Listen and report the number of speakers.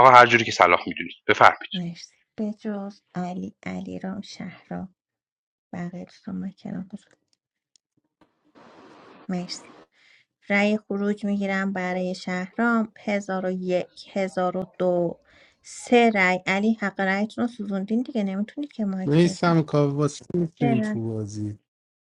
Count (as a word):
three